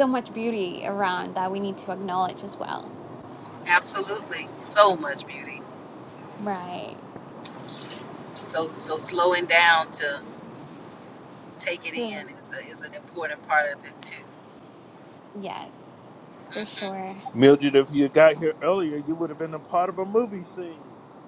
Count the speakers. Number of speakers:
3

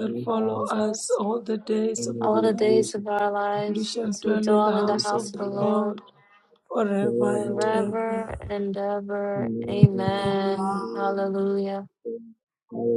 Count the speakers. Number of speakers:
3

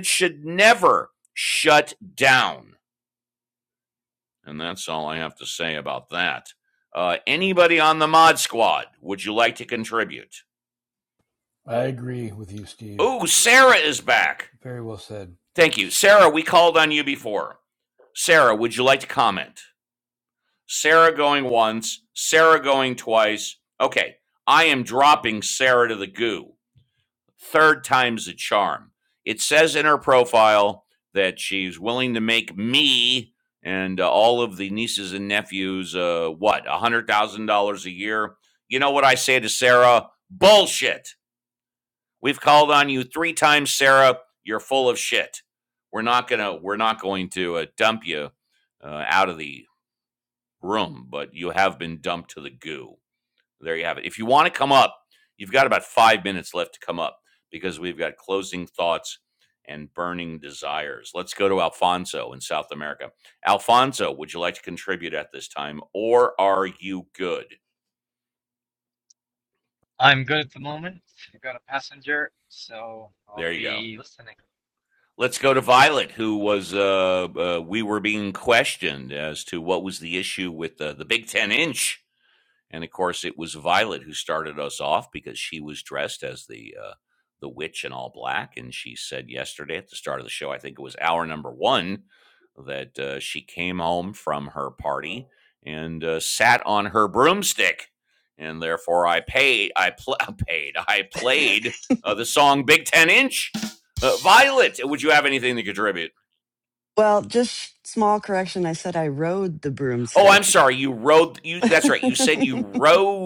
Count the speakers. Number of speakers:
4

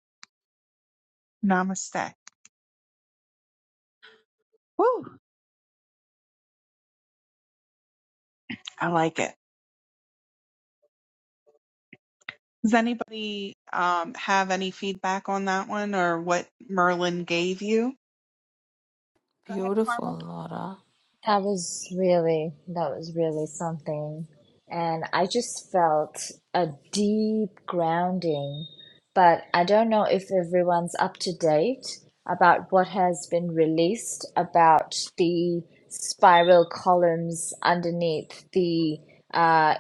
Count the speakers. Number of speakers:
3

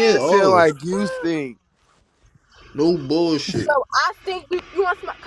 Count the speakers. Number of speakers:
3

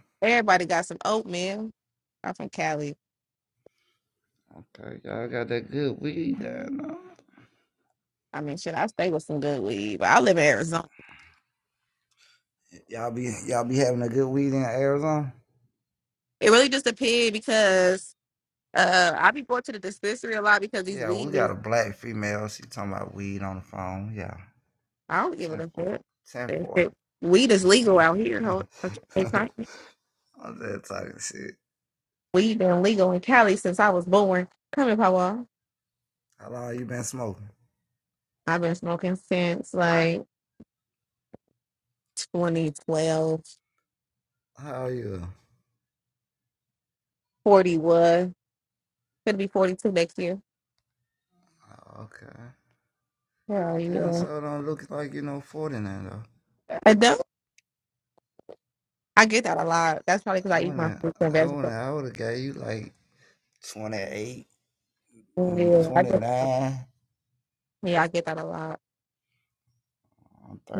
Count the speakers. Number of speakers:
2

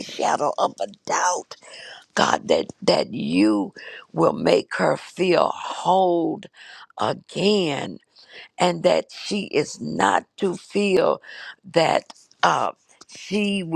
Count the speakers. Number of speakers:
1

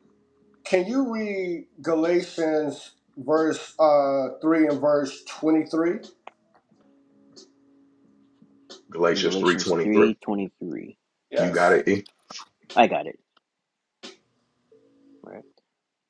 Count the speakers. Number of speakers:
3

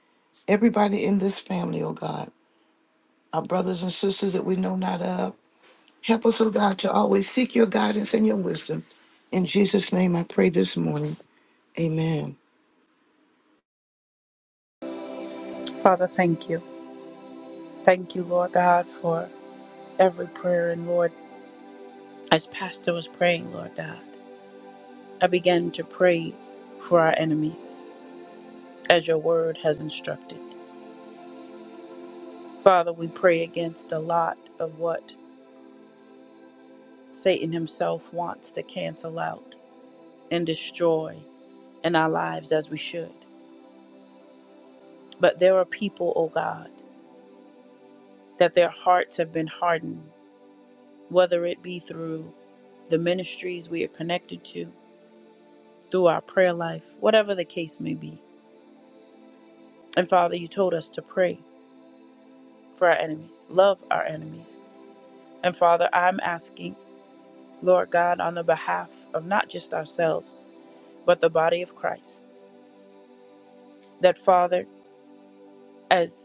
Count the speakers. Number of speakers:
2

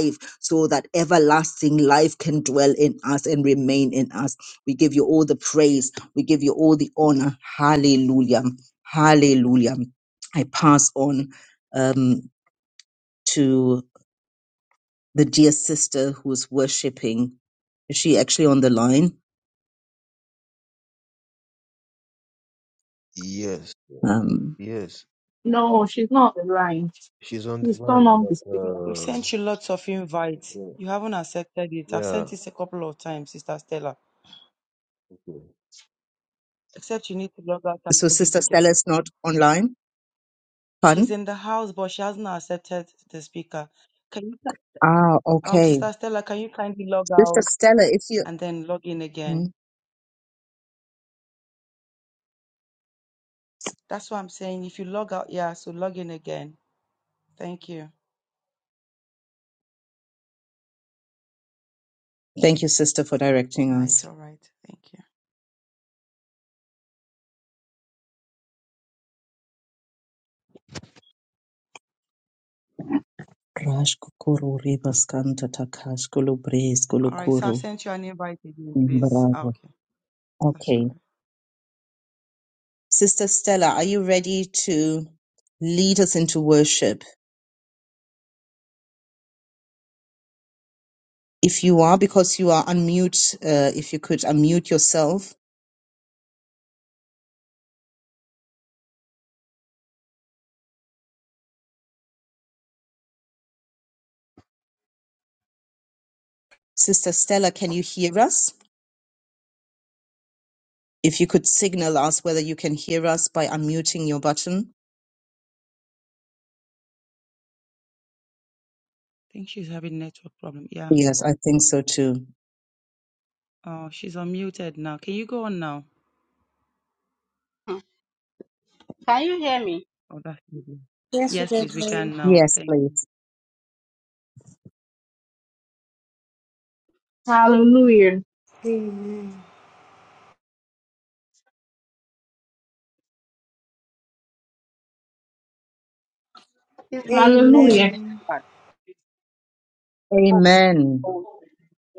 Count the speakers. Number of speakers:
6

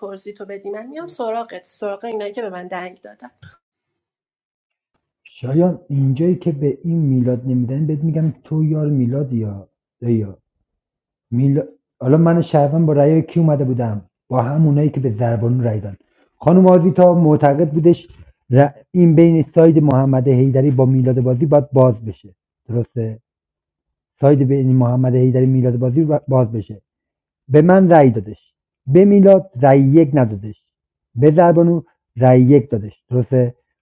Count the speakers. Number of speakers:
2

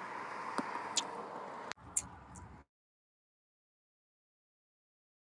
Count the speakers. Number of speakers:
0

